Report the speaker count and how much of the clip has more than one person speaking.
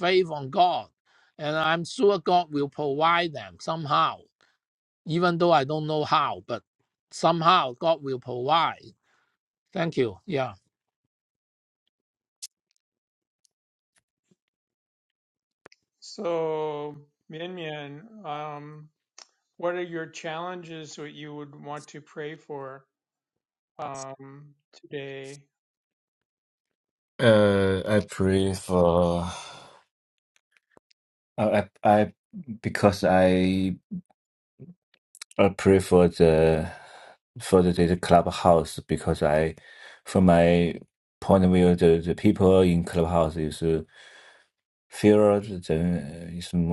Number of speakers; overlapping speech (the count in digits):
3, no overlap